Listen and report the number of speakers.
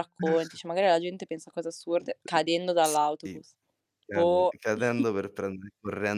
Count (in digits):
2